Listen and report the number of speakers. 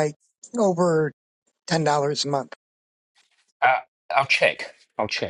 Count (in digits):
2